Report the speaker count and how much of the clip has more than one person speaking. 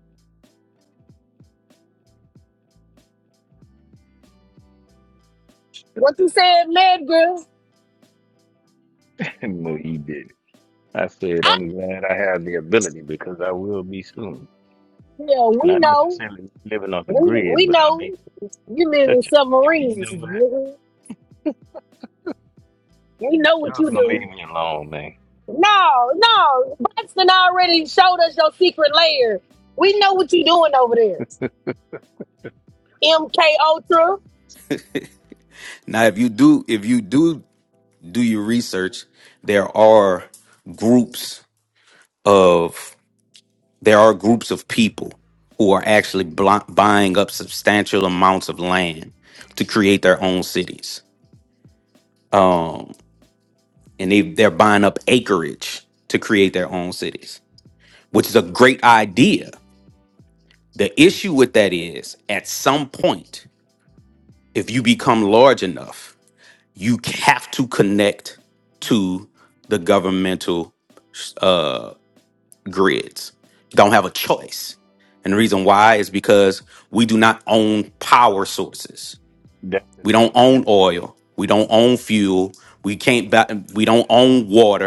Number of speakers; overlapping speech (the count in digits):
3, about 4%